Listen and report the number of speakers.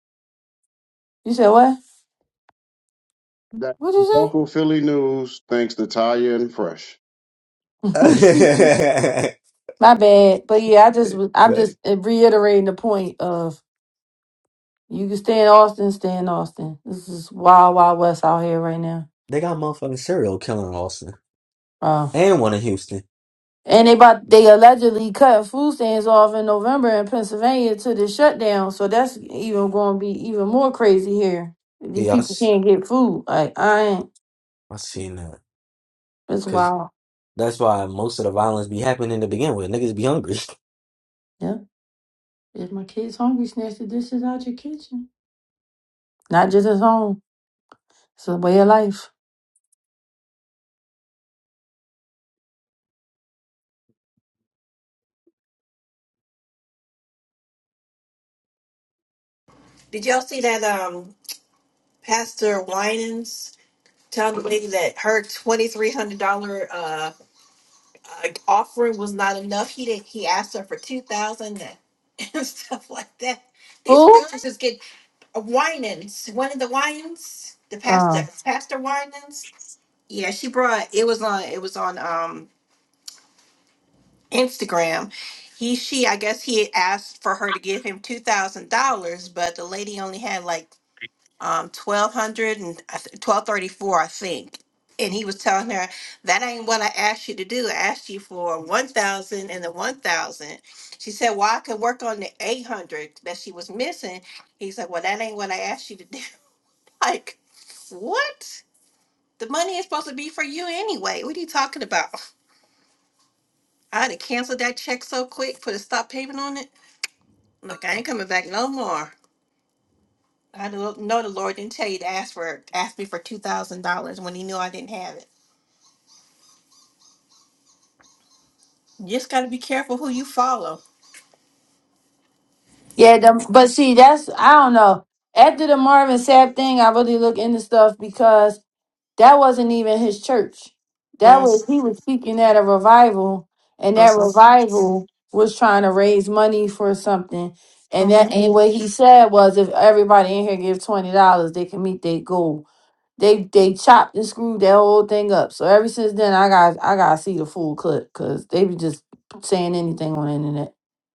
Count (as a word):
four